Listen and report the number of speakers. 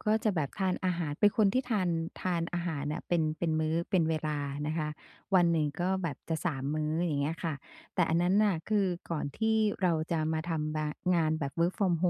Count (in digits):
1